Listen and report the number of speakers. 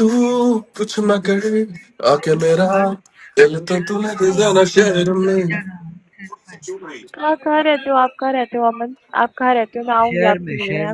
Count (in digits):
3